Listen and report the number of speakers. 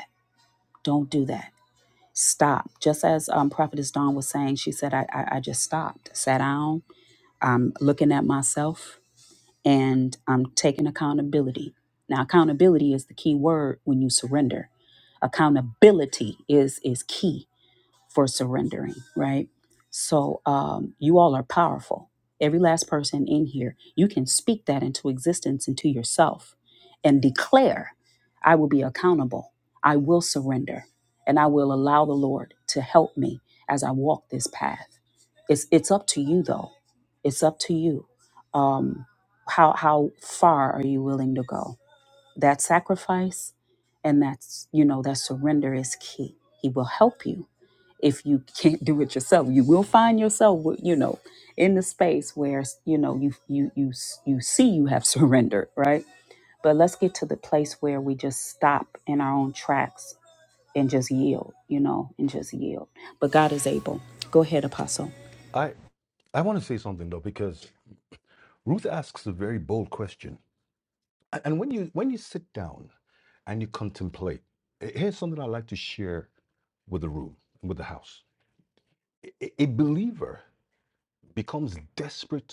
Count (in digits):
2